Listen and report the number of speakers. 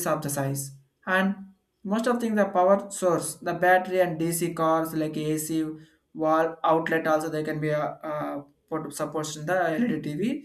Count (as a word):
one